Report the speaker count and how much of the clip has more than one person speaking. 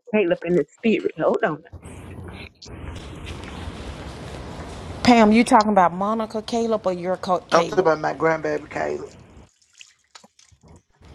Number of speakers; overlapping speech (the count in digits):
3, about 3%